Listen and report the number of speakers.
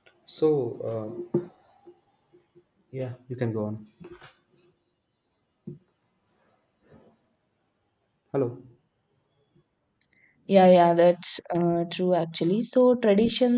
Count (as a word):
two